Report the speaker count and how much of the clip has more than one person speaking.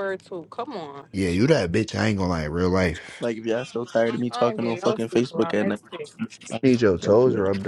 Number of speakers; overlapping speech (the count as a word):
three, about 30%